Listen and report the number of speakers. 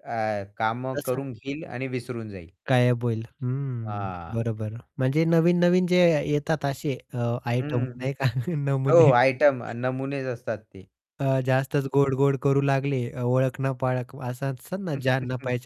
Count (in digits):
2